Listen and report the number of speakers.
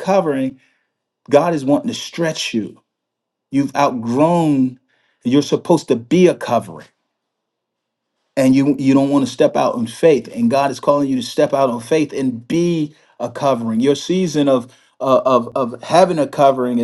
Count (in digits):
1